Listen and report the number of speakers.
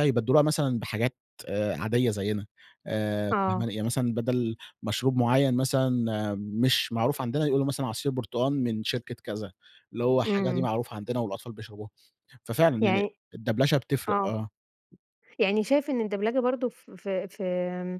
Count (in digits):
2